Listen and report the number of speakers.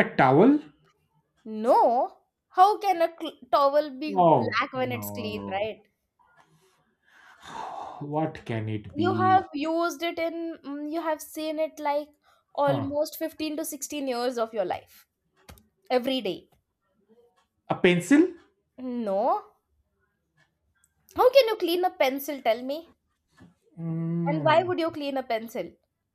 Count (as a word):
two